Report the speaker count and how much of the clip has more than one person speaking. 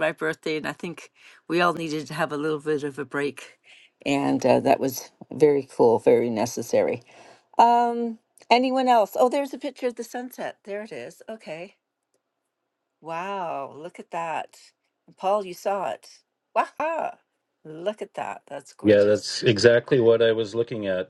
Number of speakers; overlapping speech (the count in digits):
2, about 1%